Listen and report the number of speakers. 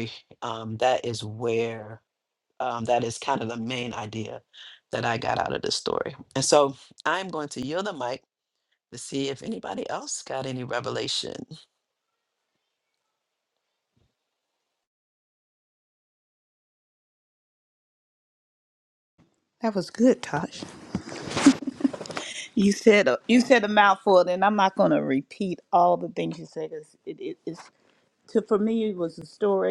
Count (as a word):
two